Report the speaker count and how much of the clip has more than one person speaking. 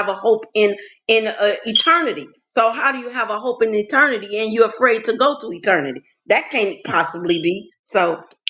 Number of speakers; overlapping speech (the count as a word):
one, no overlap